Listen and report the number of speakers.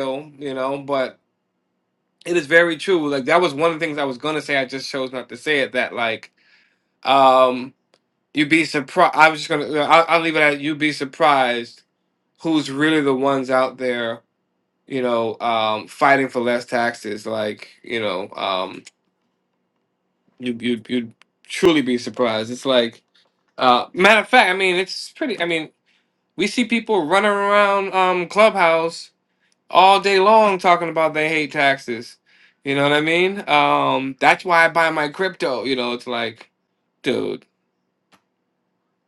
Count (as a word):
one